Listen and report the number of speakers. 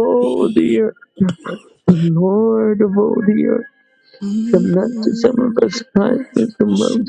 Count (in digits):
2